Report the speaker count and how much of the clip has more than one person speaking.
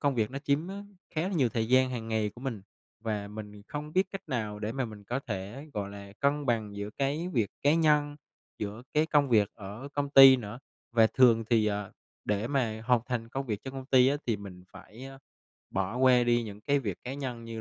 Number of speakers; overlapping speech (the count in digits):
1, no overlap